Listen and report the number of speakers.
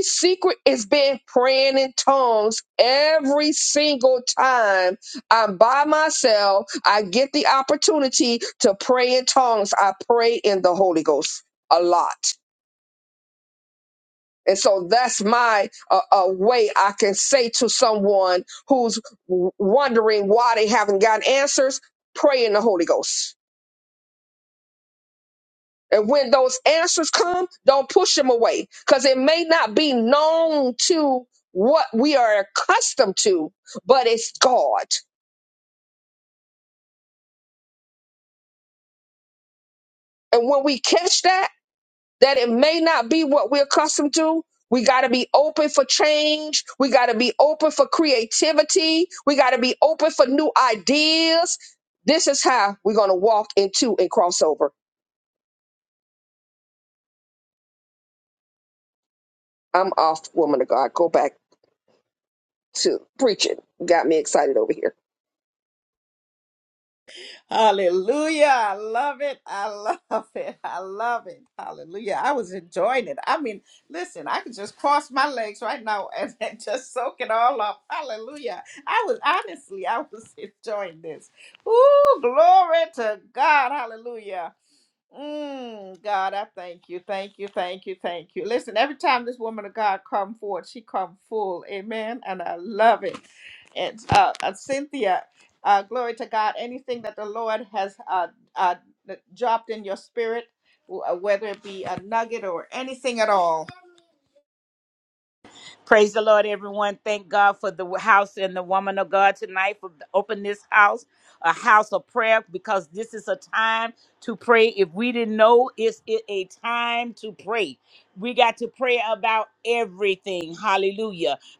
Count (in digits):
3